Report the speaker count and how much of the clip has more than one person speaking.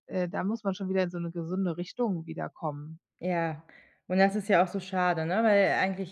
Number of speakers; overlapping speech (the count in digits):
2, no overlap